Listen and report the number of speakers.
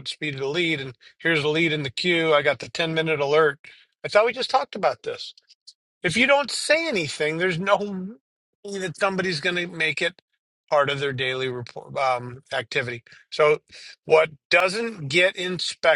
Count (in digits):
1